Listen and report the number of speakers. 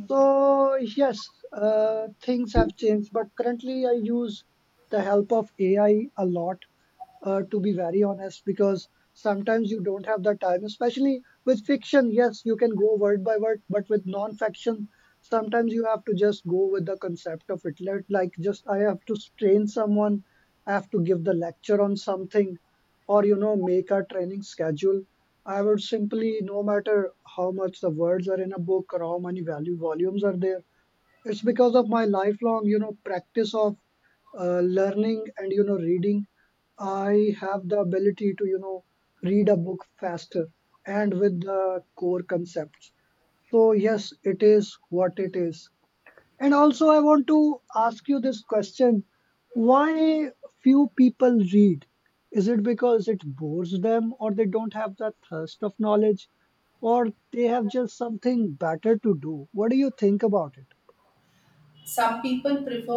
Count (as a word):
two